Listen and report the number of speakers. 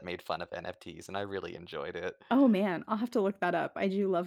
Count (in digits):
2